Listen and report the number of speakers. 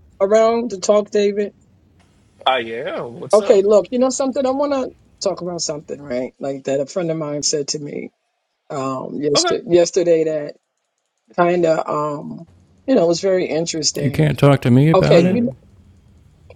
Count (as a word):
three